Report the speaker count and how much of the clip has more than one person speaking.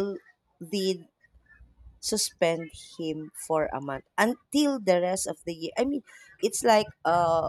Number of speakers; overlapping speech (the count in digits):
1, no overlap